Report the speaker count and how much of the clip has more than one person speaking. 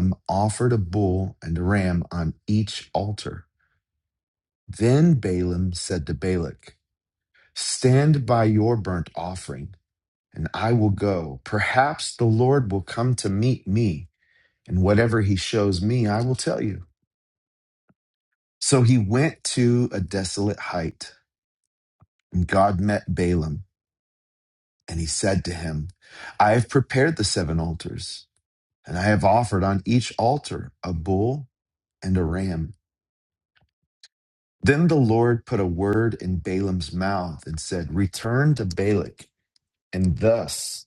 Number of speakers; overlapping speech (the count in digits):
1, no overlap